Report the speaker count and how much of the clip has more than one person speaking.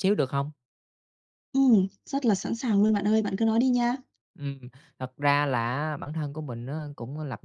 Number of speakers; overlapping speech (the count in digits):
2, no overlap